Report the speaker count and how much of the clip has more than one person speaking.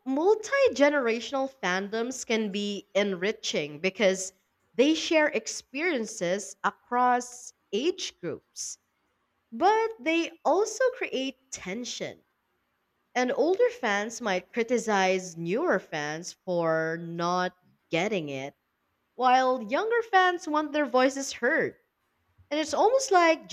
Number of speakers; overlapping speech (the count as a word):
one, no overlap